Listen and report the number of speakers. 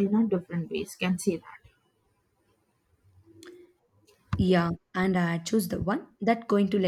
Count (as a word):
two